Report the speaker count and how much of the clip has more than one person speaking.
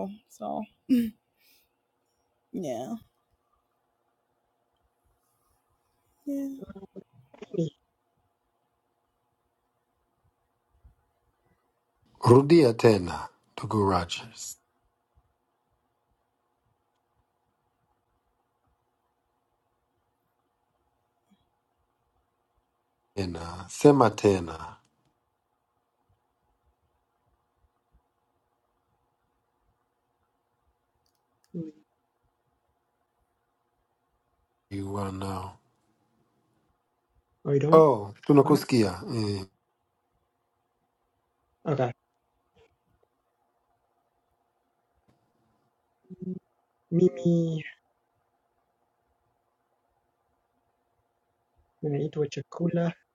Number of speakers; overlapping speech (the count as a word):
three, about 1%